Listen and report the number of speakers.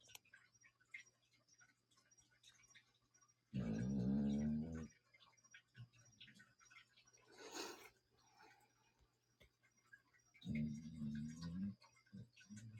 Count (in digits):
0